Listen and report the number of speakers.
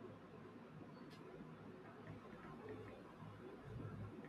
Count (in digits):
0